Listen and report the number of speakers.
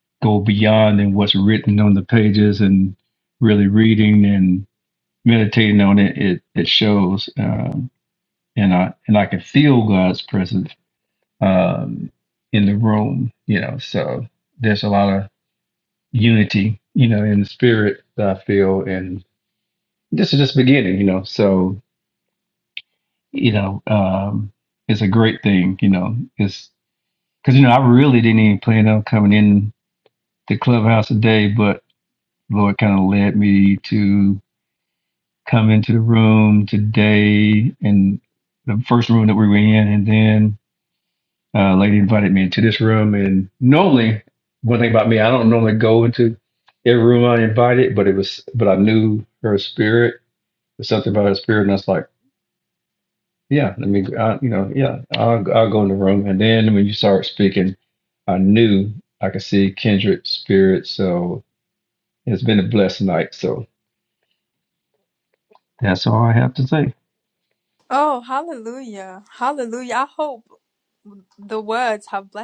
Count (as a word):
two